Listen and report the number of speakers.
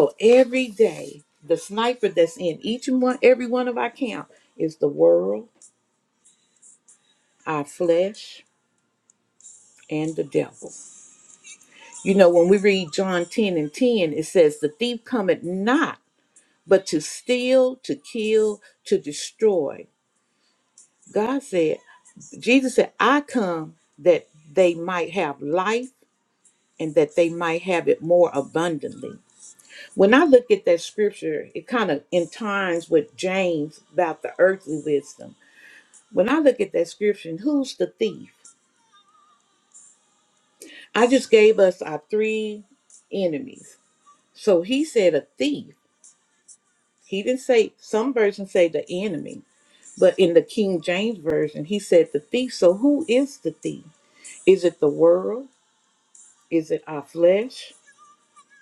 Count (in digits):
1